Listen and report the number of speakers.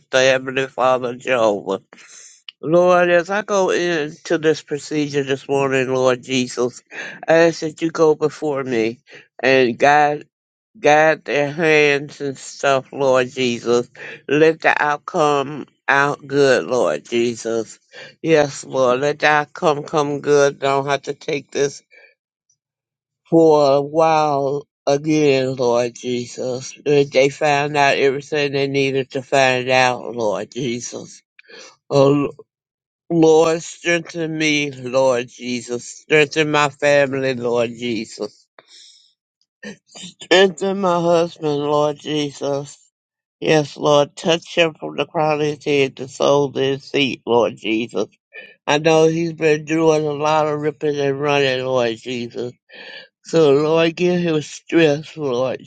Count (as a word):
one